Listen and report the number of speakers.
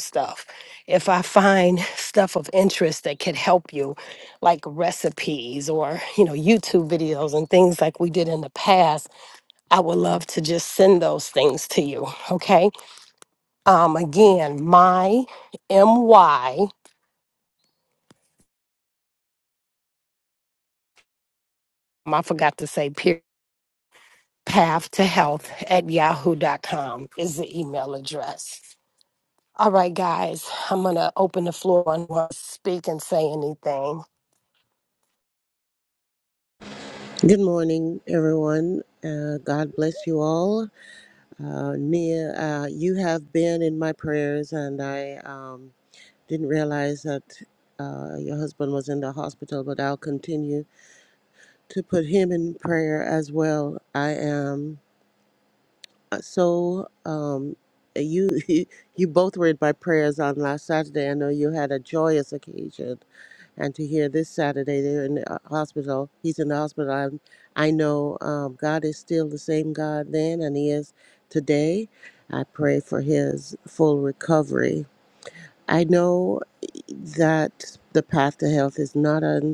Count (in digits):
2